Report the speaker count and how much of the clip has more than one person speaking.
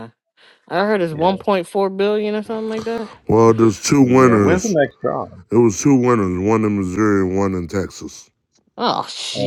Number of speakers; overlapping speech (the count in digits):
3, about 11%